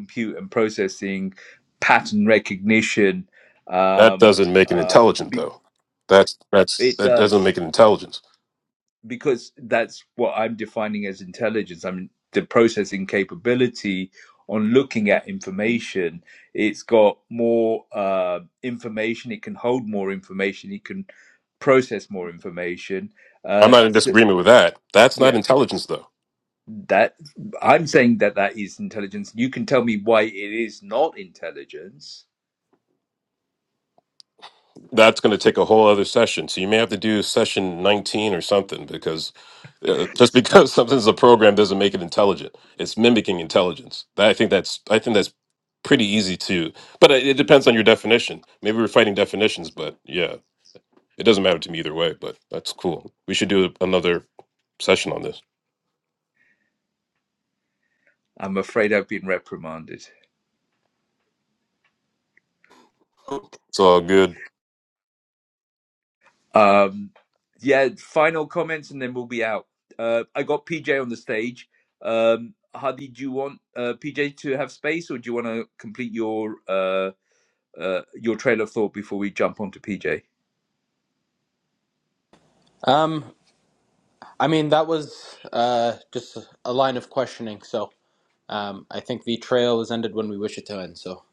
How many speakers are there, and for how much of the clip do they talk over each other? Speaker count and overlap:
three, about 3%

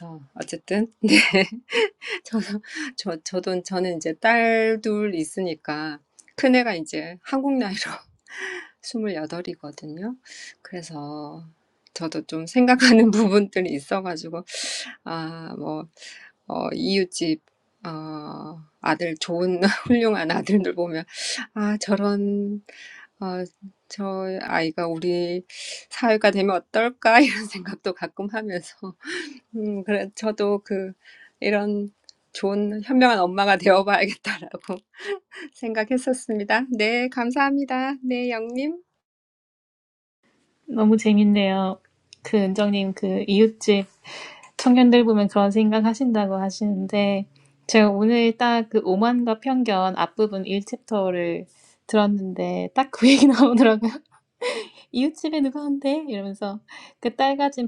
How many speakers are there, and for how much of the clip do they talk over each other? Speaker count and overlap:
two, no overlap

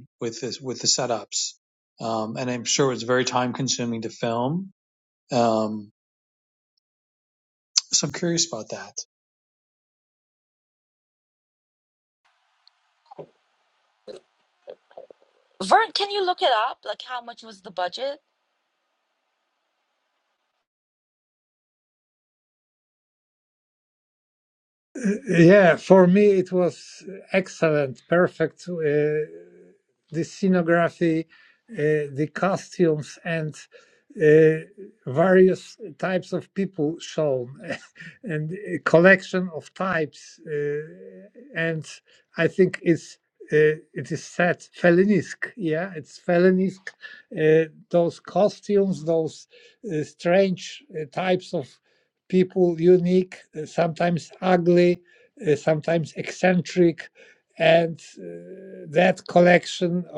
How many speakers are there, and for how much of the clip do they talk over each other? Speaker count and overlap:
three, no overlap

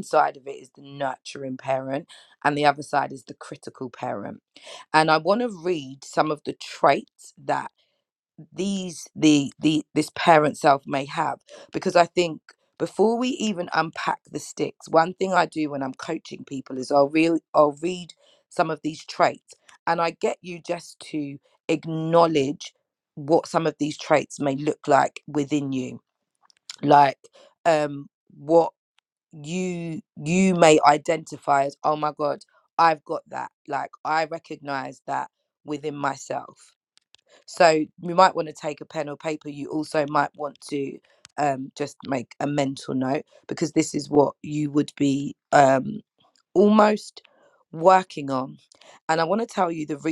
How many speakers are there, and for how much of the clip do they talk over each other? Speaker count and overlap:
one, no overlap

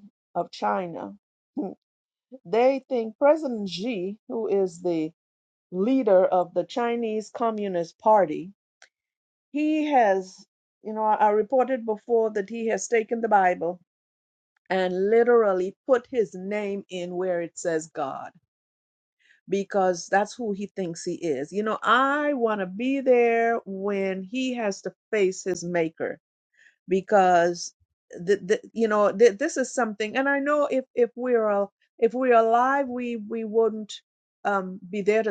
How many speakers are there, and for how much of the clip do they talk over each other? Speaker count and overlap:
one, no overlap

